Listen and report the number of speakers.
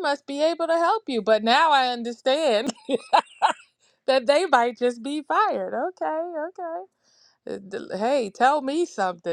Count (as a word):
one